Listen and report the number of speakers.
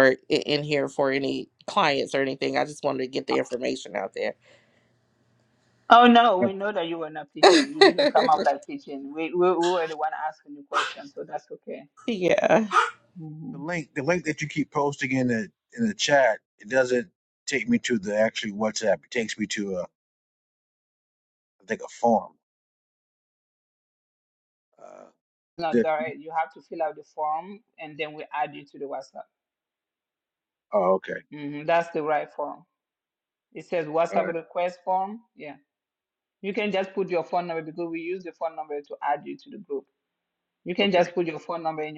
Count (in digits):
3